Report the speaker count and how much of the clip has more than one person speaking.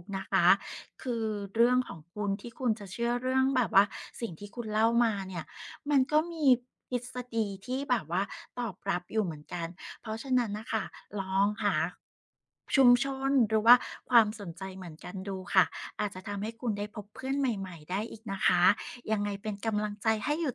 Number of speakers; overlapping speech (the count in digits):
1, no overlap